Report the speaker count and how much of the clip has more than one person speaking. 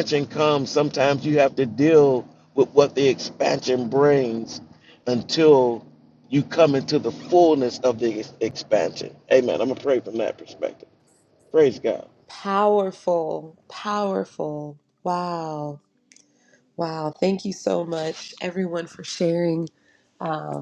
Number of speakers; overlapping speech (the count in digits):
2, no overlap